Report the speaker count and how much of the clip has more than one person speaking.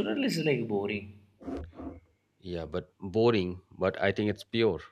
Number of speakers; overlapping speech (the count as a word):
two, no overlap